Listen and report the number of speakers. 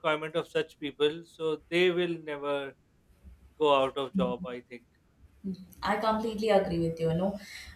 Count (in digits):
2